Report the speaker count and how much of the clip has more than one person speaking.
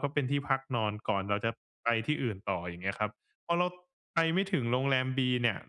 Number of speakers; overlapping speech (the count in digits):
1, no overlap